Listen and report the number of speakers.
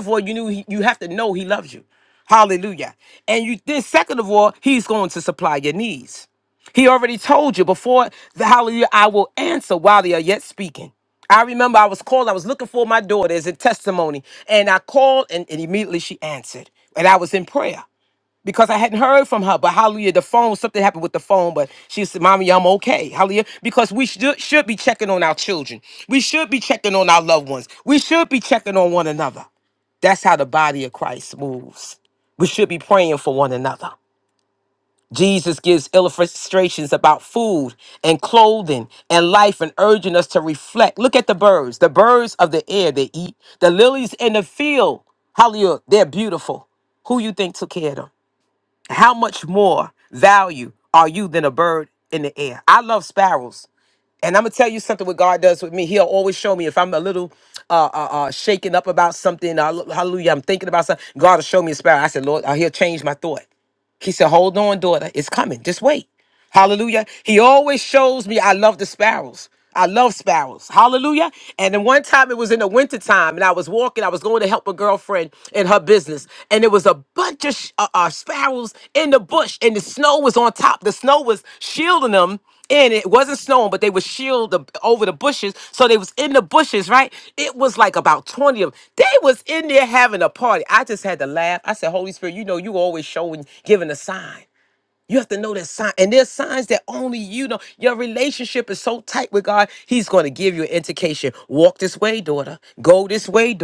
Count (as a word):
one